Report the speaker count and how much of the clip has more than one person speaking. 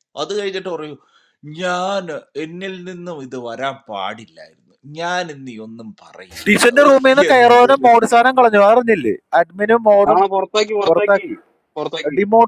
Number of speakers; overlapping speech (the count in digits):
3, about 15%